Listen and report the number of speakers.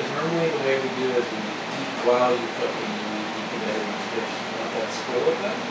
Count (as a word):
one